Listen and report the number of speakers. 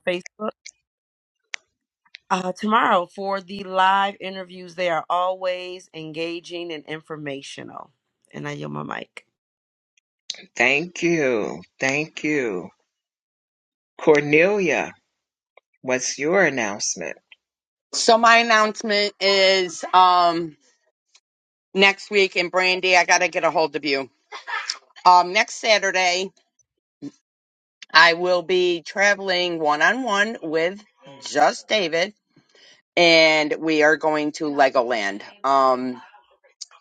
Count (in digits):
3